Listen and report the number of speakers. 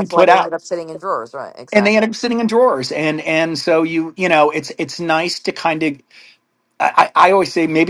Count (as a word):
two